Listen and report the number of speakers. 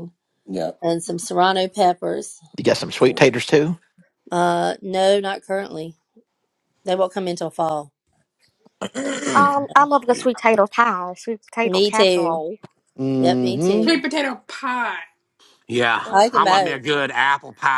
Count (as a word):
six